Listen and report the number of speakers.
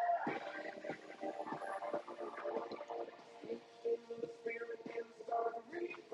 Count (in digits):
0